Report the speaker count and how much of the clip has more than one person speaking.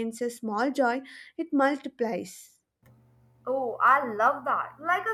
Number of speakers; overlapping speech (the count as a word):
two, no overlap